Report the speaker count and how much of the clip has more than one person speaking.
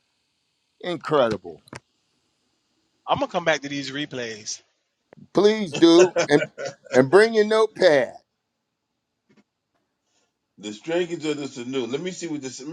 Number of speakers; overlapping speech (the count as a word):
three, no overlap